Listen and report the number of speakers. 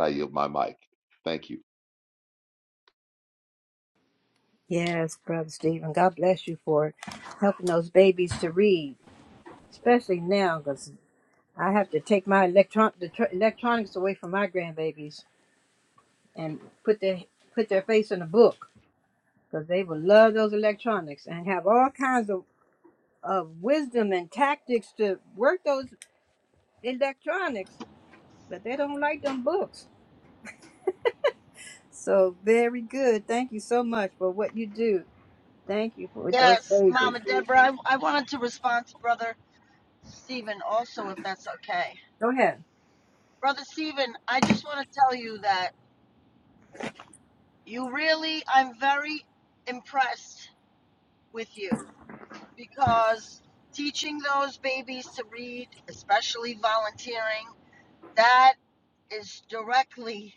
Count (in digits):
3